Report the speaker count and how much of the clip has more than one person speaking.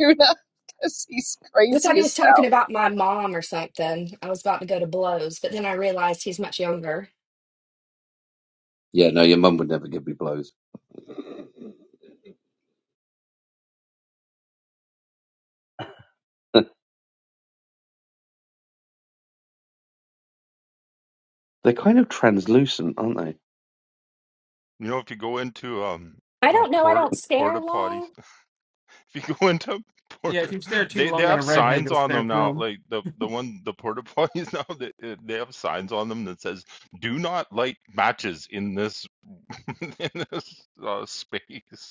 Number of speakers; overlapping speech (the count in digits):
5, about 10%